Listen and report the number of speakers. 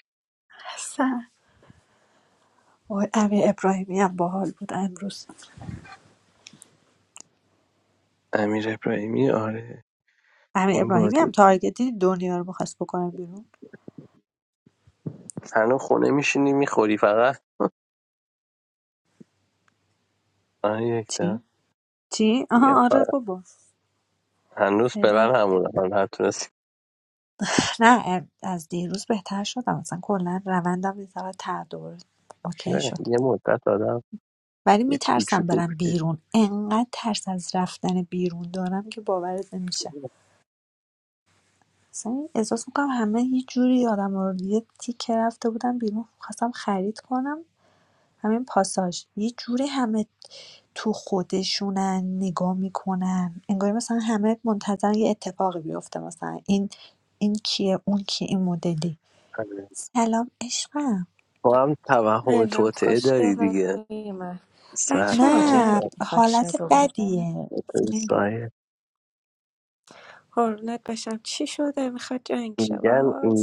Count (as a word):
three